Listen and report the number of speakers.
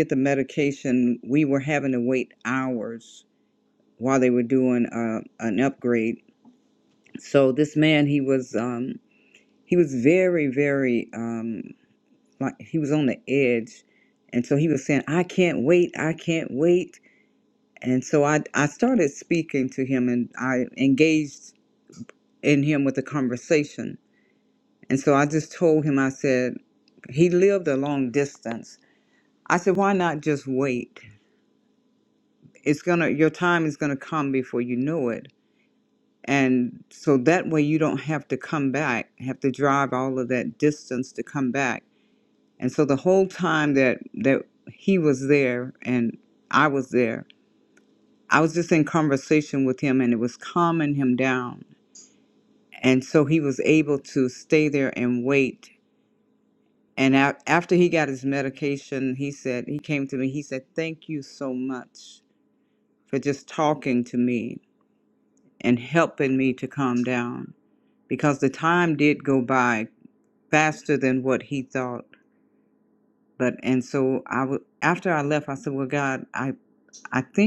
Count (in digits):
1